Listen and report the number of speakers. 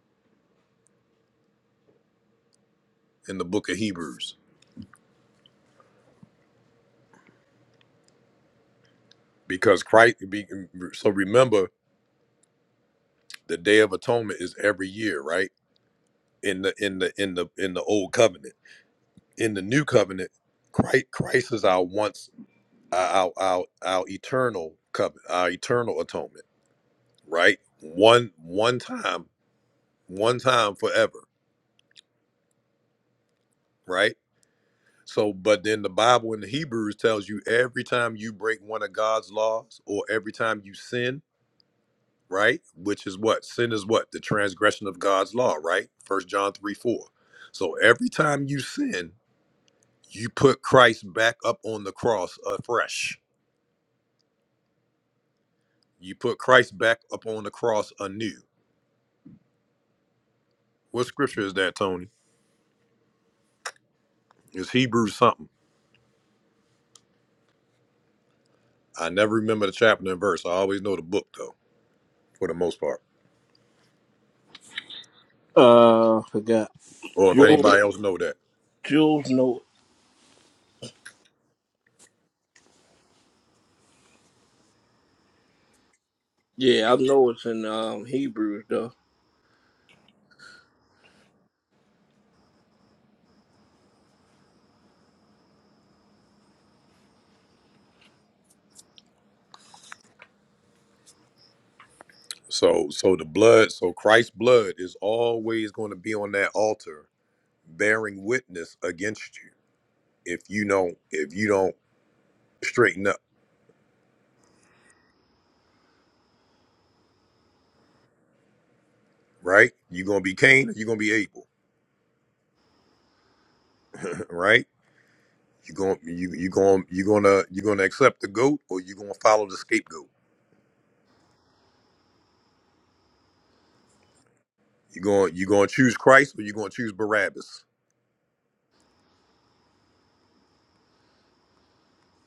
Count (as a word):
two